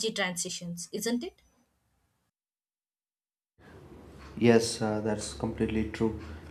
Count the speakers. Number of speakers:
2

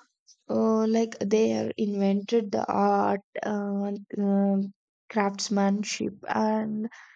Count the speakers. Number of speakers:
1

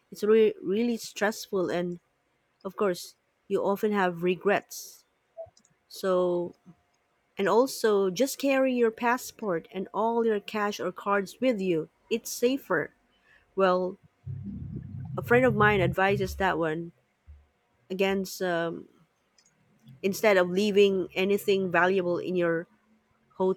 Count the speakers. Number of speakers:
1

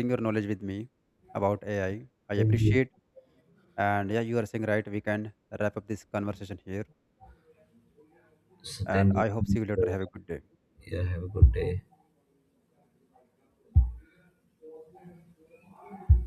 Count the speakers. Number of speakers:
2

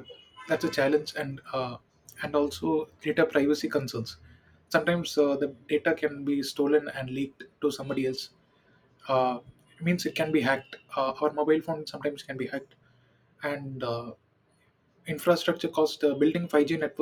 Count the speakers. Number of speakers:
1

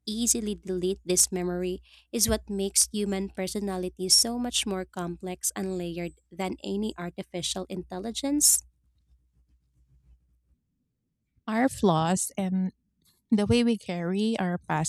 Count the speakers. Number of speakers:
2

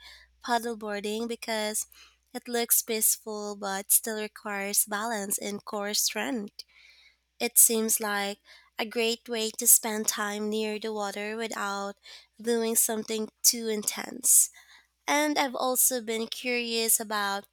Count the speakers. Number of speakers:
1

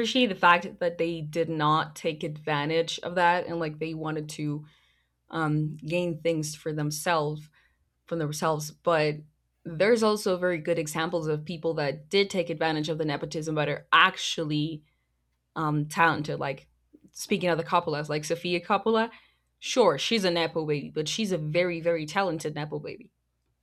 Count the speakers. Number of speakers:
1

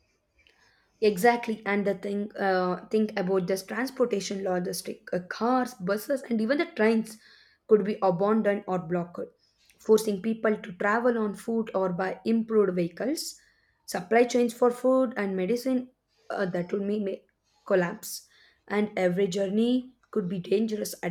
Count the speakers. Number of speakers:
1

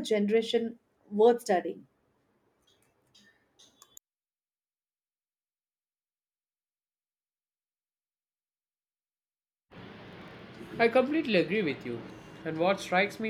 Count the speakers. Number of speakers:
2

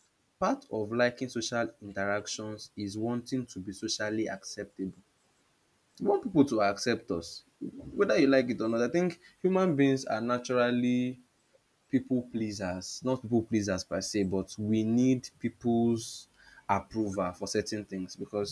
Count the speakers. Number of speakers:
1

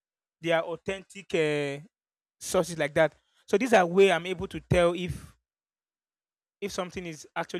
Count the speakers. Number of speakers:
1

